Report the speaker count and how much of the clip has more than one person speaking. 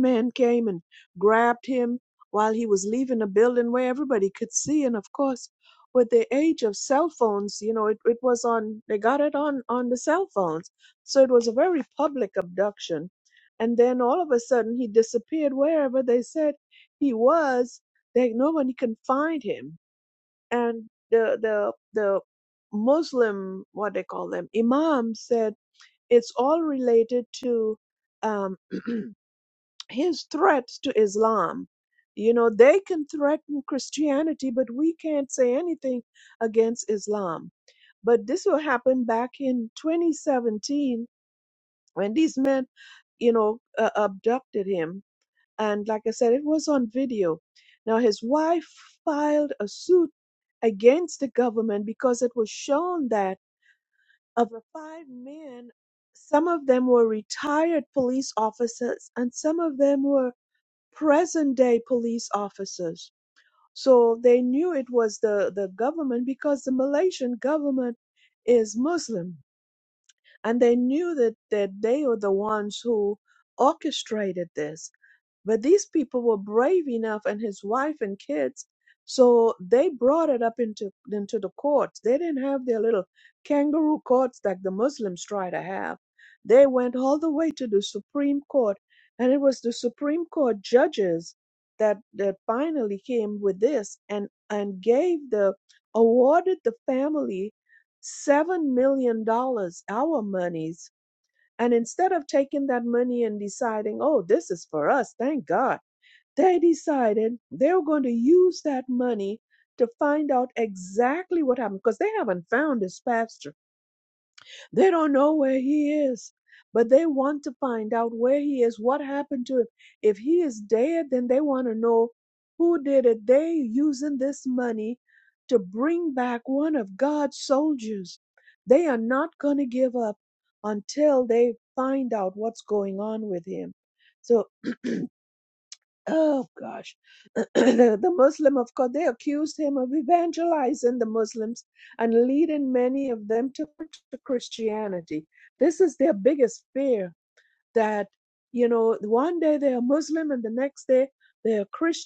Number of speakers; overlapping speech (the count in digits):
1, no overlap